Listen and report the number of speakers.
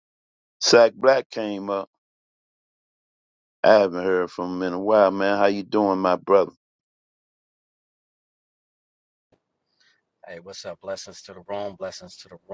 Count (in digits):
2